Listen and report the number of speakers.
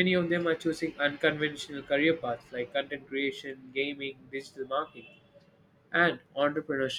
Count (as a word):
one